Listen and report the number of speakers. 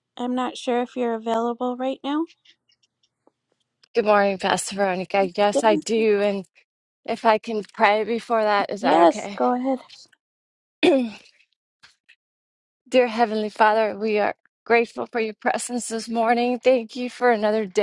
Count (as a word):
two